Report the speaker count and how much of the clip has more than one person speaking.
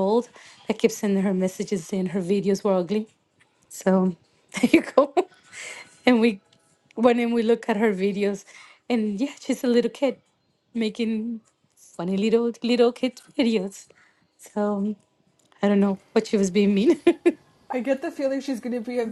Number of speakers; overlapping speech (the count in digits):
2, no overlap